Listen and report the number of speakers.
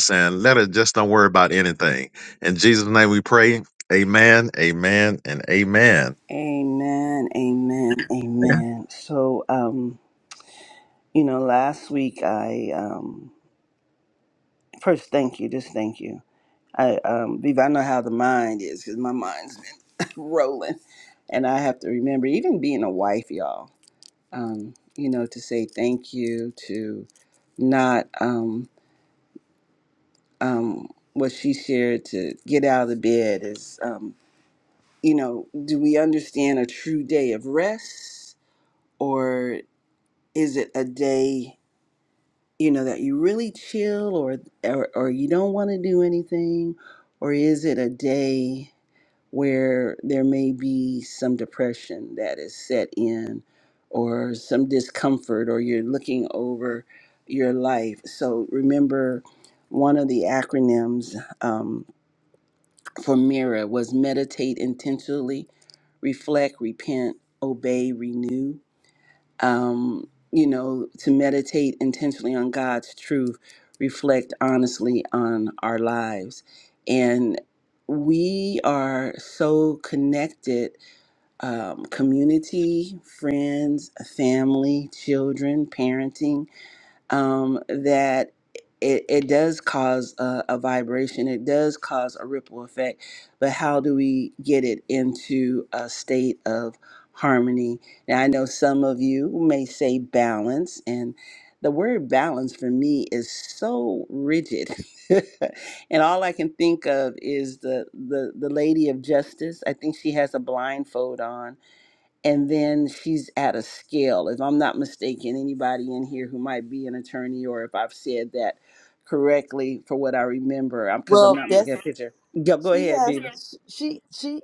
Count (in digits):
3